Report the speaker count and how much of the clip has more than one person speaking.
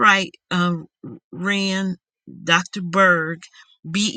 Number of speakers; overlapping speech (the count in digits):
1, no overlap